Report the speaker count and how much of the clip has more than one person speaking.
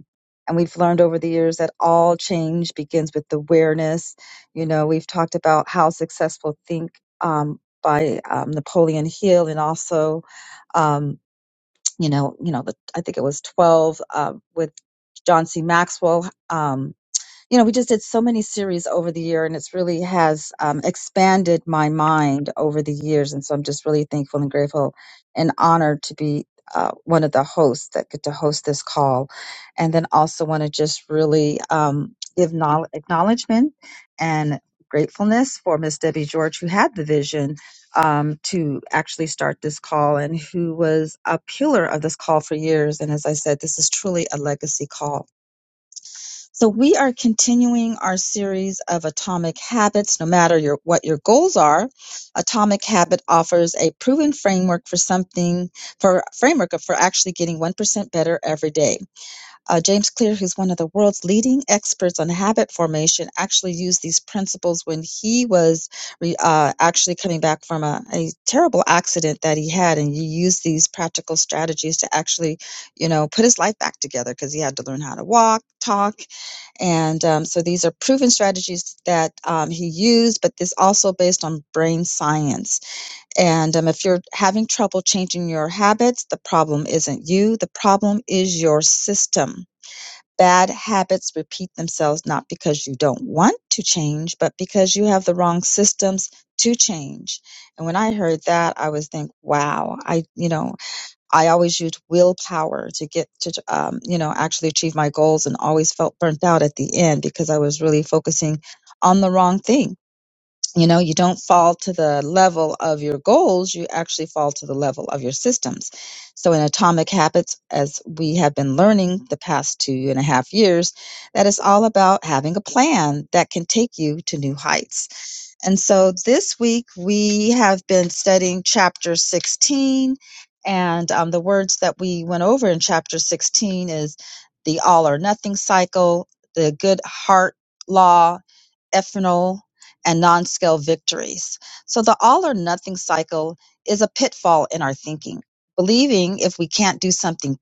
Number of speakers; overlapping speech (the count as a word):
one, no overlap